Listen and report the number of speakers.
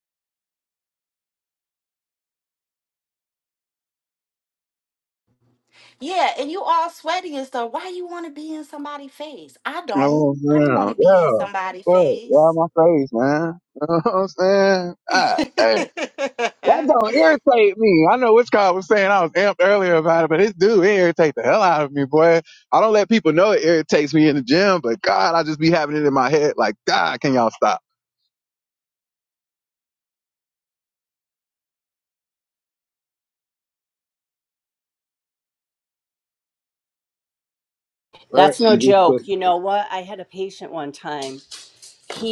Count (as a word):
three